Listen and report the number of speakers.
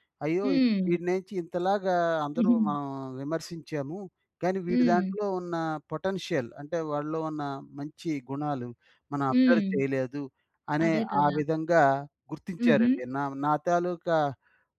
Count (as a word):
two